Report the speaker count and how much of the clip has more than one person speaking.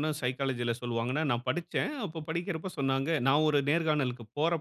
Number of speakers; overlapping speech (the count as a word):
one, no overlap